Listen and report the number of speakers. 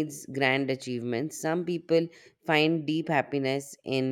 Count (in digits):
1